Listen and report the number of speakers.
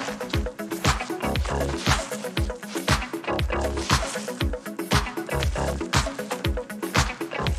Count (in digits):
0